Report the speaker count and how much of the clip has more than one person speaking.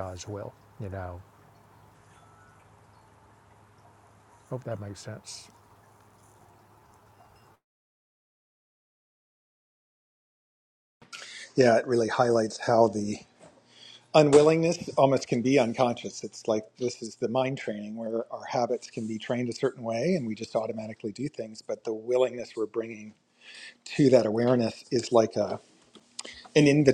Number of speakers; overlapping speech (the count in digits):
2, no overlap